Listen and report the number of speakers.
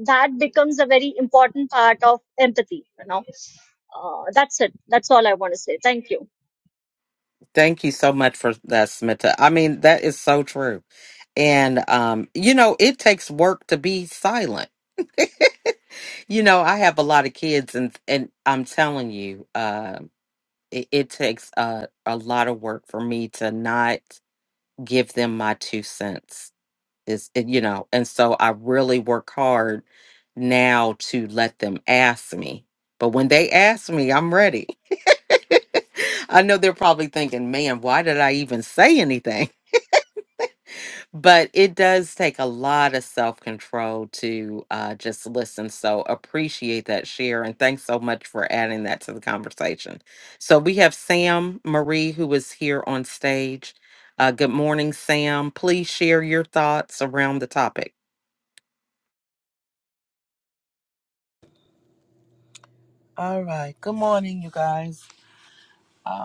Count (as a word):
three